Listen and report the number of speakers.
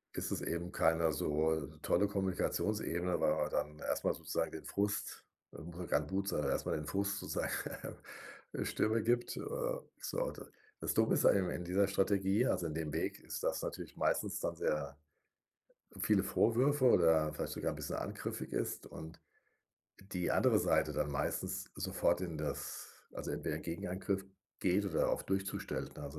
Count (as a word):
one